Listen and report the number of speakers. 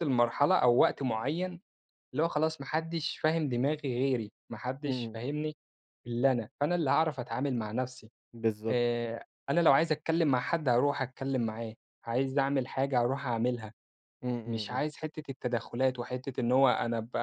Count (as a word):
two